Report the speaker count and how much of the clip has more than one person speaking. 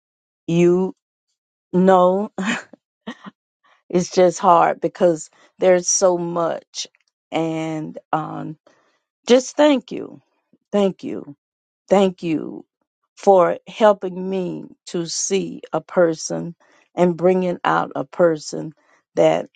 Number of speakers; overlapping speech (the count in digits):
1, no overlap